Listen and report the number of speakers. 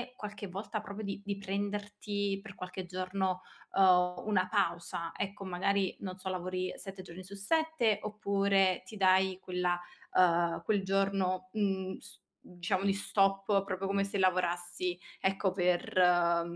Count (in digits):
1